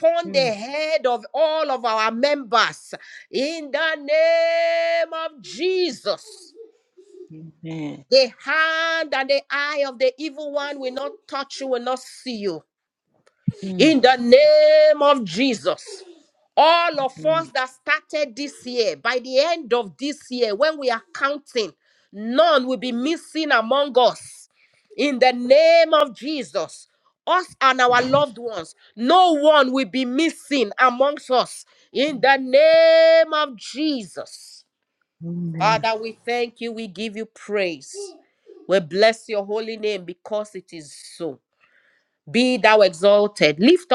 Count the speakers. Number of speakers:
2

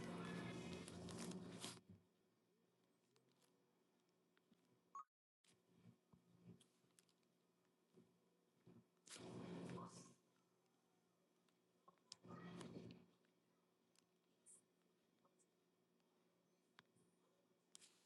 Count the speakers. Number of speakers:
0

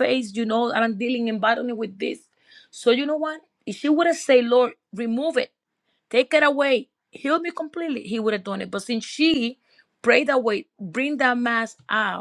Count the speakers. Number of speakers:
1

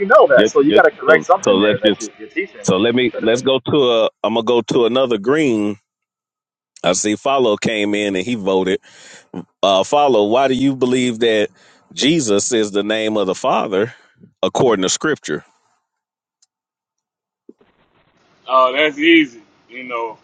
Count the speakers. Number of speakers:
3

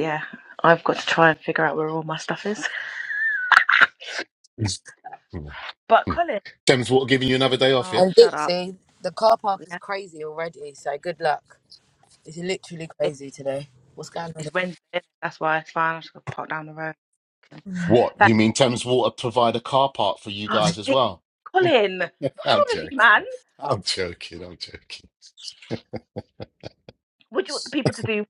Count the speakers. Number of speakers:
3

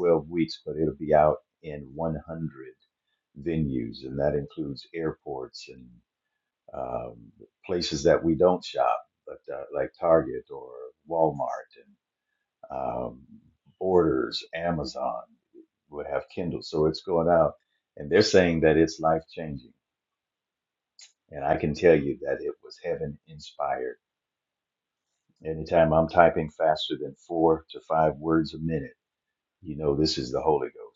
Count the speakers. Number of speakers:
1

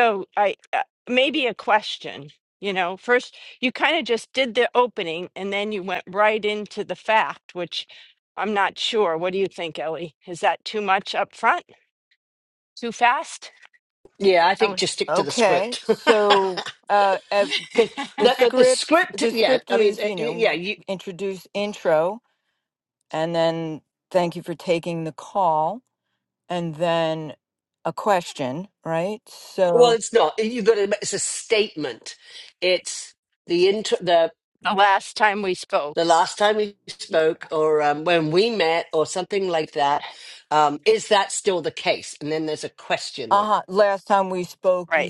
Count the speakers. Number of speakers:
3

